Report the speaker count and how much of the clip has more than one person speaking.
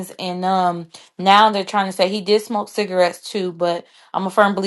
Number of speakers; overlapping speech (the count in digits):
1, no overlap